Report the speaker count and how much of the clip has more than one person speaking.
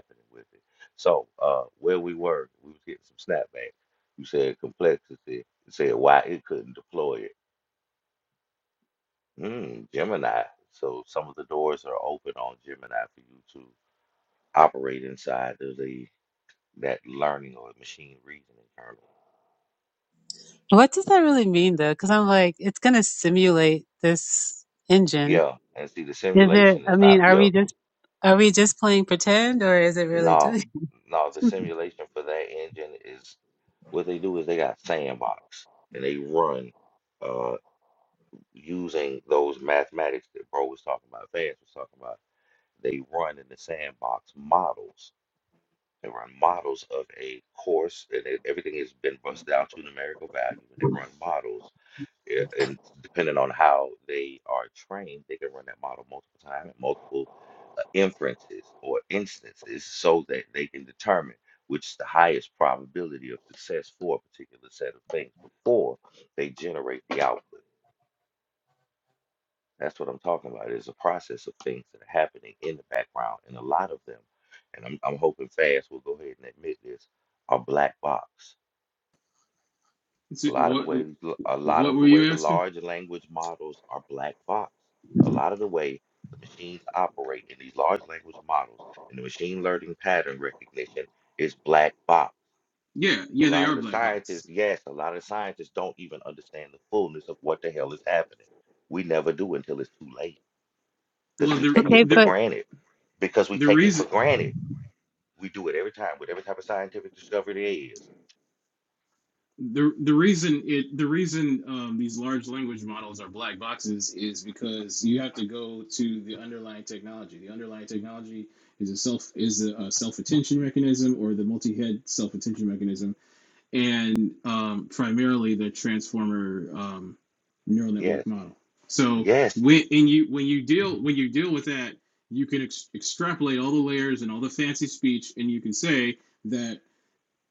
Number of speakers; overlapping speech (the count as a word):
three, about 4%